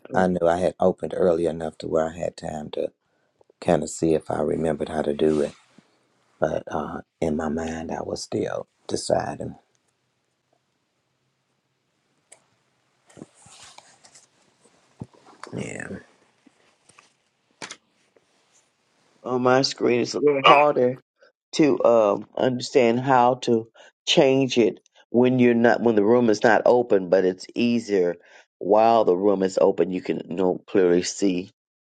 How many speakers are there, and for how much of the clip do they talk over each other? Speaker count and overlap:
2, no overlap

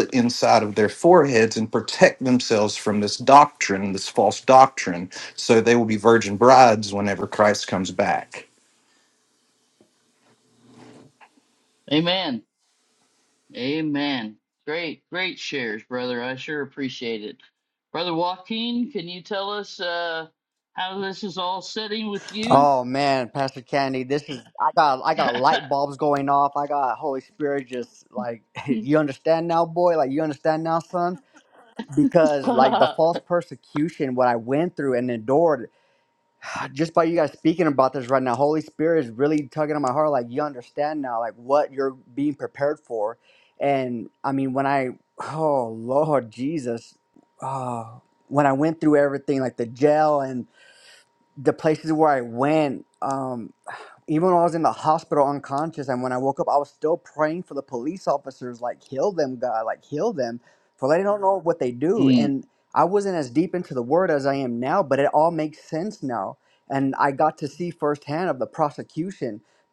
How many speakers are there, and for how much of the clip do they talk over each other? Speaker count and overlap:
3, about 1%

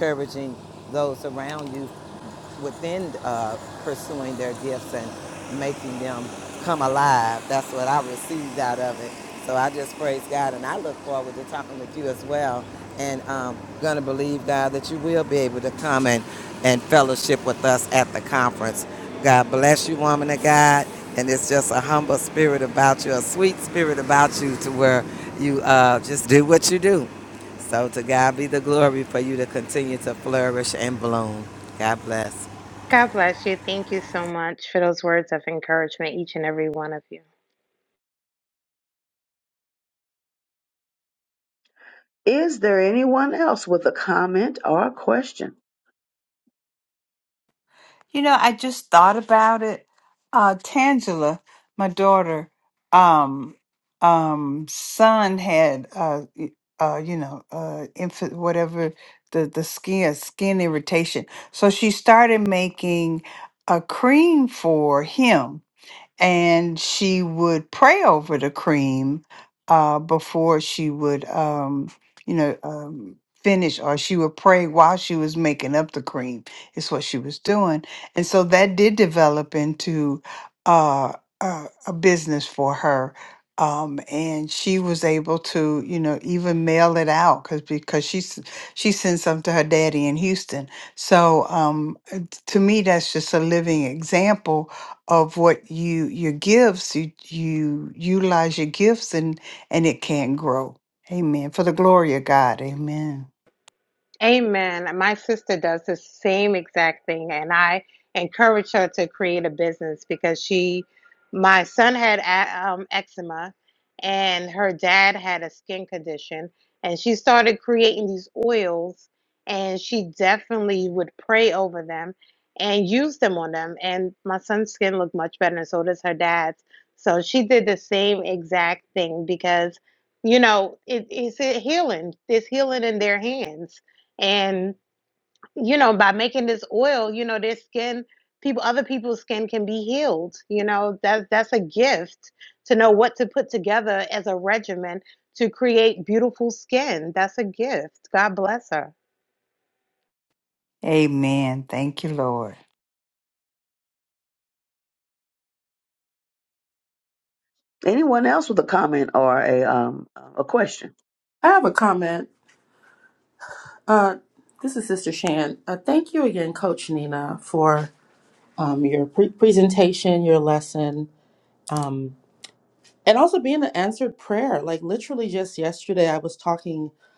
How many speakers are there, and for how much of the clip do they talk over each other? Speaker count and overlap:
5, no overlap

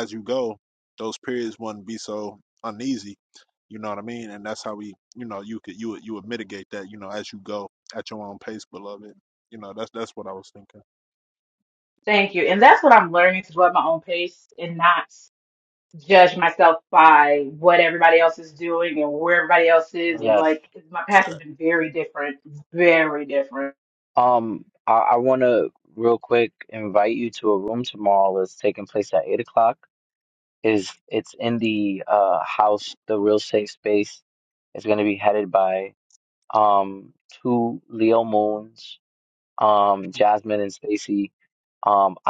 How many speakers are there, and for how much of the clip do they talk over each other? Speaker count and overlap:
3, about 1%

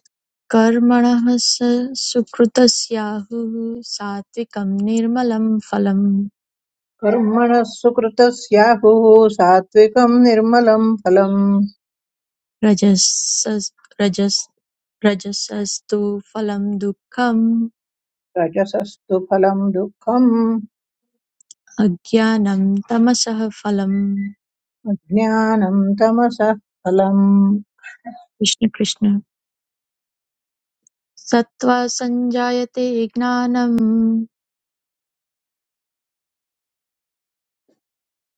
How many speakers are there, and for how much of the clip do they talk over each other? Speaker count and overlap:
2, no overlap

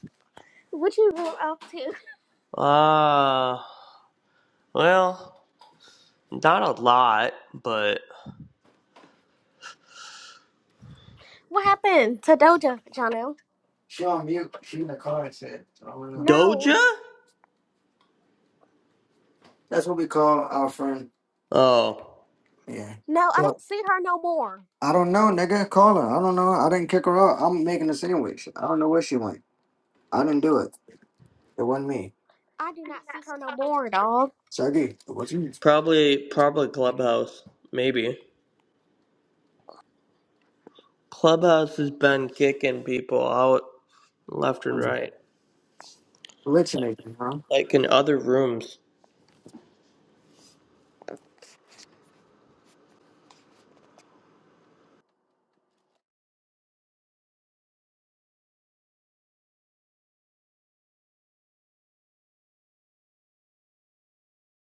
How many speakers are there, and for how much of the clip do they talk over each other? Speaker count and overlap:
3, about 2%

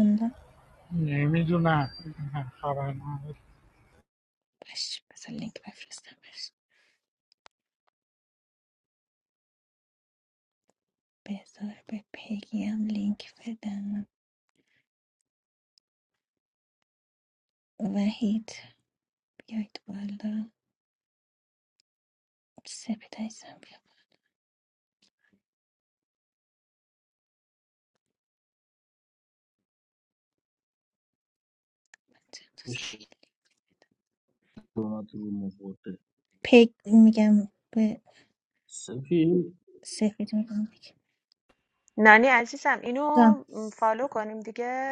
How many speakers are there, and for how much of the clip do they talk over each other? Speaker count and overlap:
4, under 1%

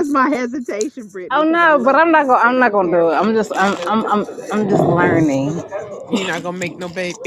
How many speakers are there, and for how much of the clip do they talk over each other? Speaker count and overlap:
3, about 30%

